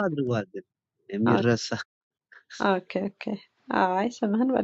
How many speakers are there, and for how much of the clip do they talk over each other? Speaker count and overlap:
2, about 3%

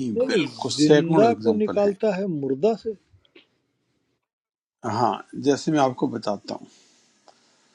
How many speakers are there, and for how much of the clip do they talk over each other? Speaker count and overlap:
2, about 23%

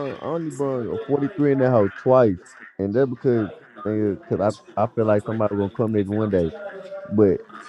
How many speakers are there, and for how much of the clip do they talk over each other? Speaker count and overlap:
1, no overlap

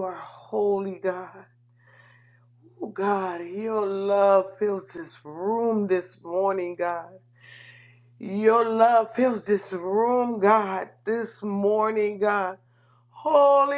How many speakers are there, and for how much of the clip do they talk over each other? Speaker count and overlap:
1, no overlap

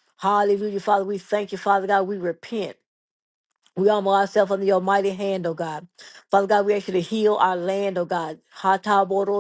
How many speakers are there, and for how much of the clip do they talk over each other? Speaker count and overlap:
1, no overlap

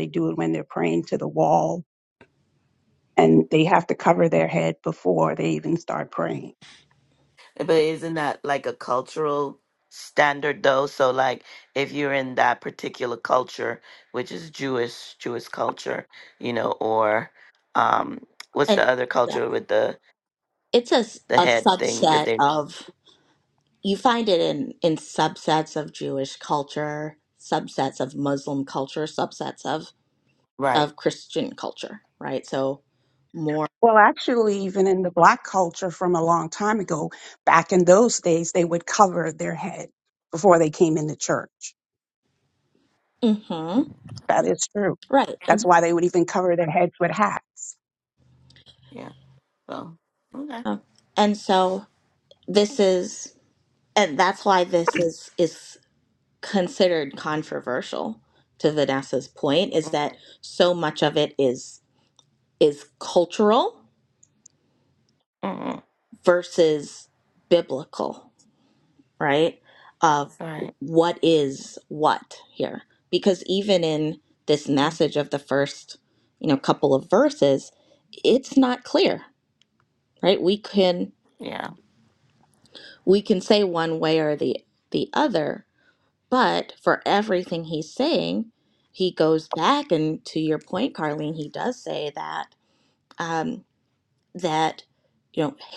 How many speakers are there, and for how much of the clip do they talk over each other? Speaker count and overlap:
3, about 2%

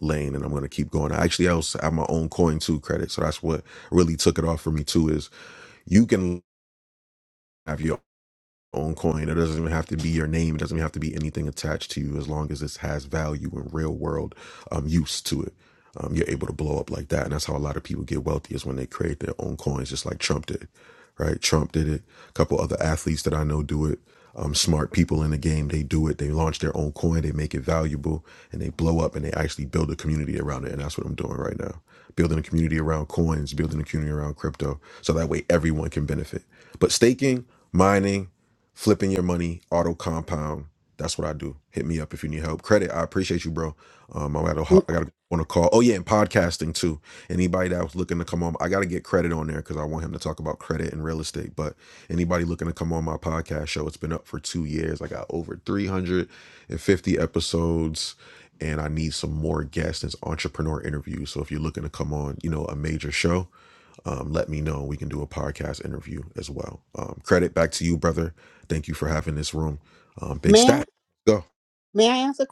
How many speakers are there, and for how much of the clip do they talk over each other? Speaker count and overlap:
2, about 1%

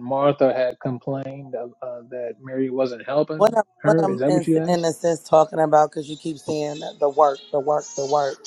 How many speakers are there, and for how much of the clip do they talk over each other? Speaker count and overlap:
2, about 12%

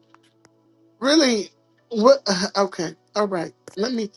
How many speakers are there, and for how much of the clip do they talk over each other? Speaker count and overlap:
1, no overlap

